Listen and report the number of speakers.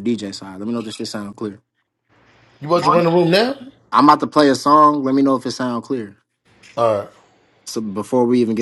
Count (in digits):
2